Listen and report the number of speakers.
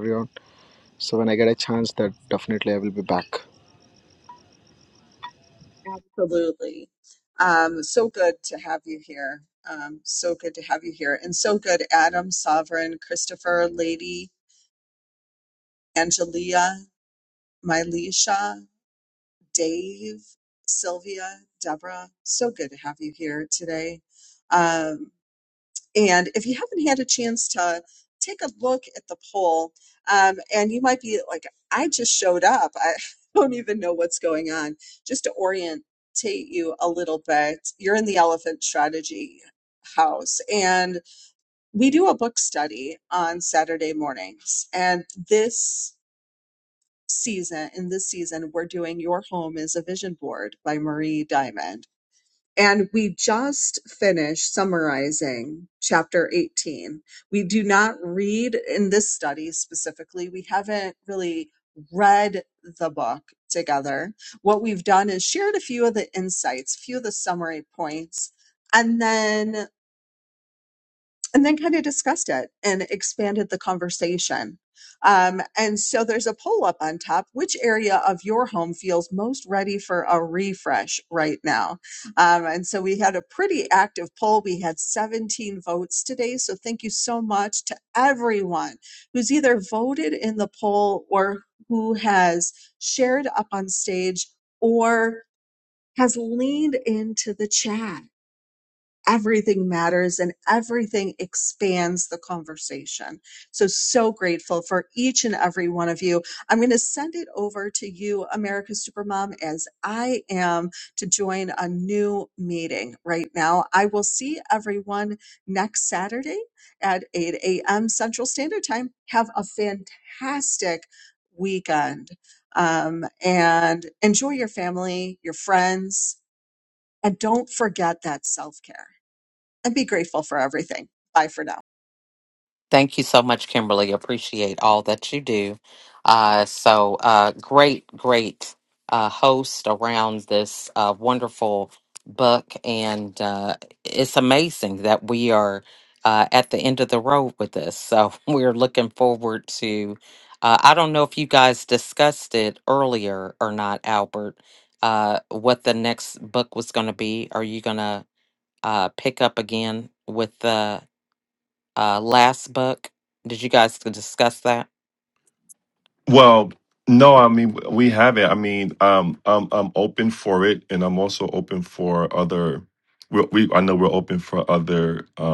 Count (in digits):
4